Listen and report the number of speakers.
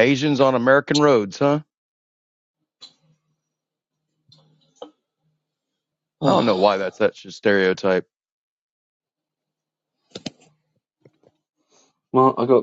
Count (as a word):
two